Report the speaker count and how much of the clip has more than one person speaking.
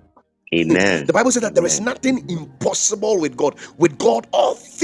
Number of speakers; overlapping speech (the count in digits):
2, about 18%